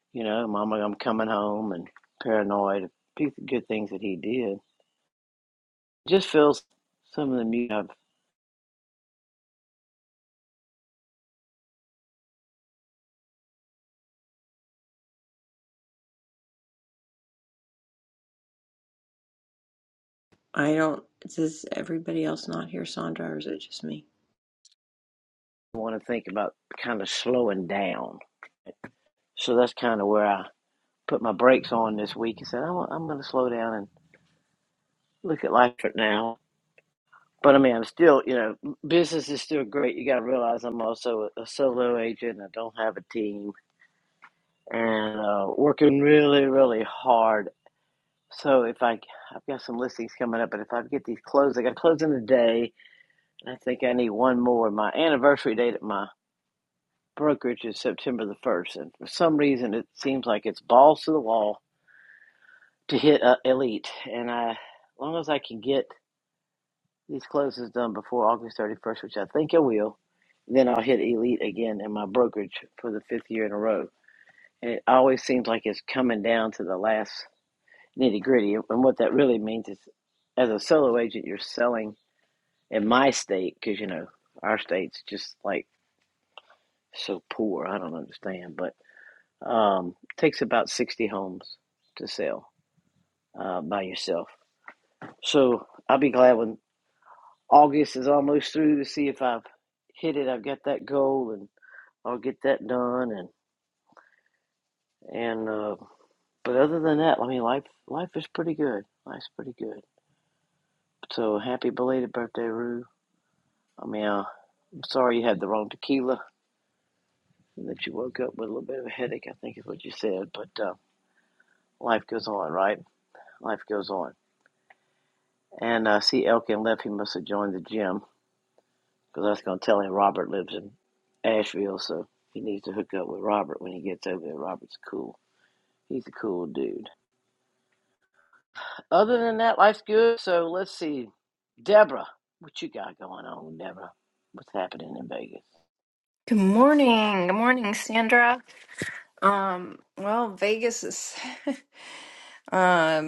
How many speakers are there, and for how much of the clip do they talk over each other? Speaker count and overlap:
3, no overlap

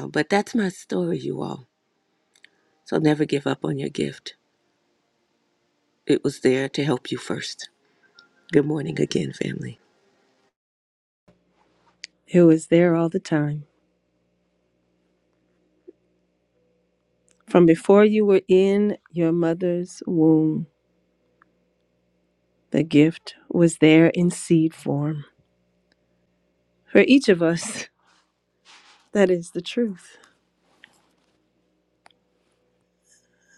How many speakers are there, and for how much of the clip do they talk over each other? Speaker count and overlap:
2, no overlap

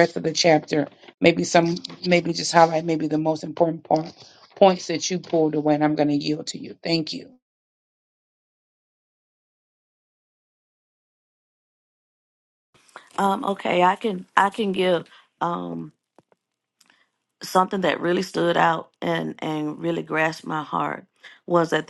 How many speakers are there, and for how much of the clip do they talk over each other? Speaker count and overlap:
2, no overlap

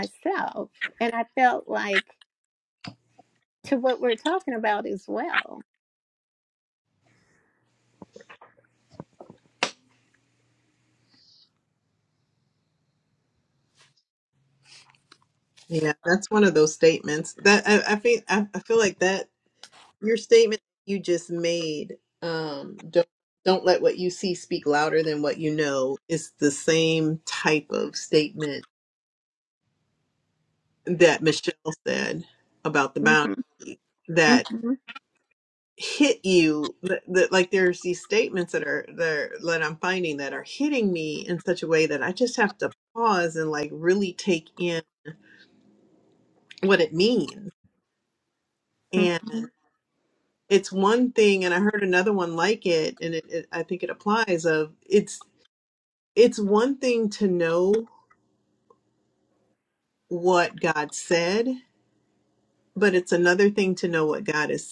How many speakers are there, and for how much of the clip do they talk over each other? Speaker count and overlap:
2, about 1%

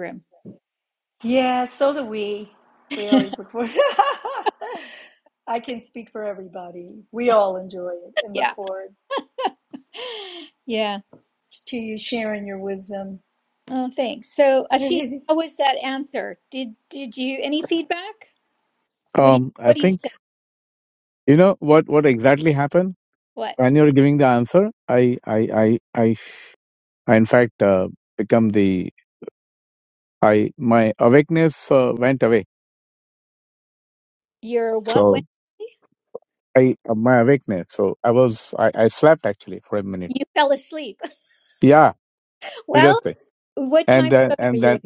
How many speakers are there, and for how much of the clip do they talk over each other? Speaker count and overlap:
3, about 7%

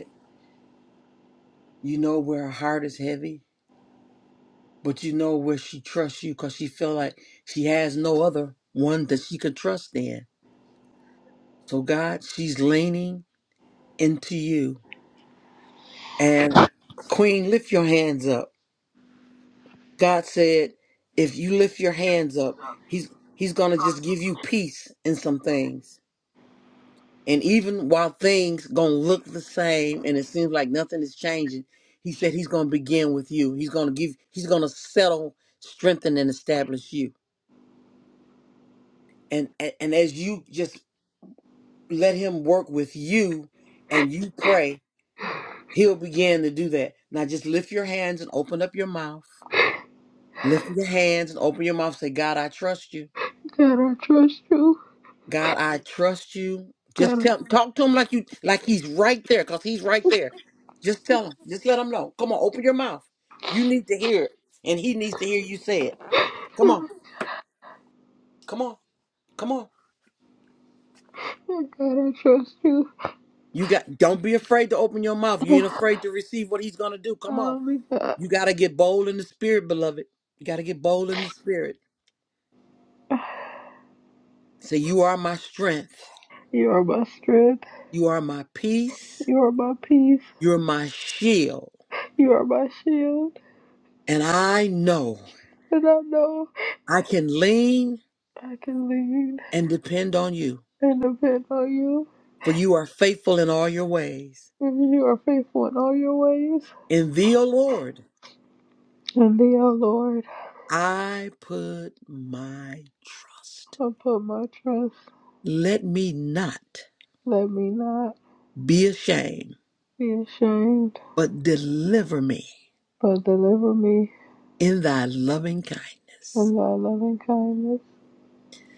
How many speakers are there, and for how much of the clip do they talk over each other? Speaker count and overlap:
2, about 1%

